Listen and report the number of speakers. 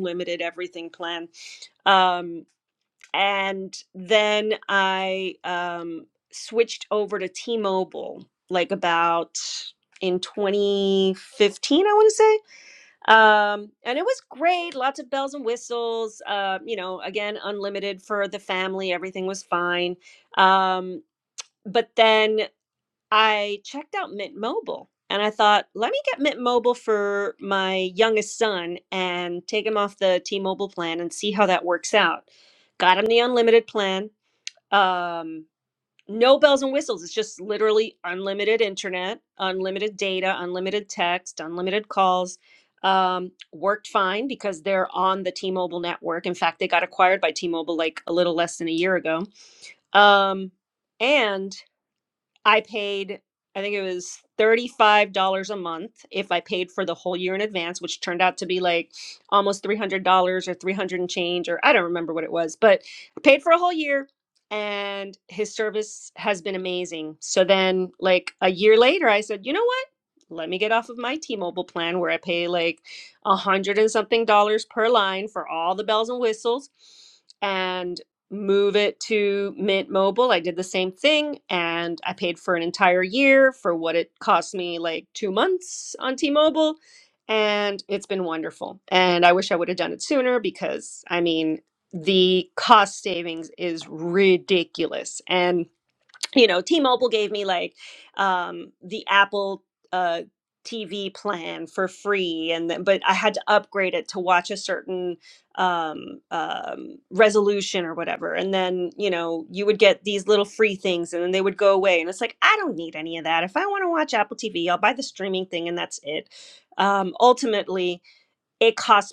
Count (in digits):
1